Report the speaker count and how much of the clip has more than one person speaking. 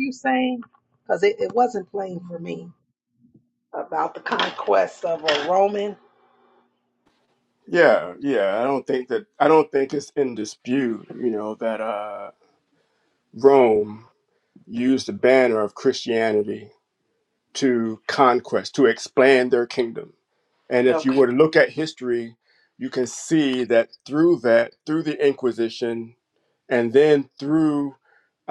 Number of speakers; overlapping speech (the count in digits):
2, about 1%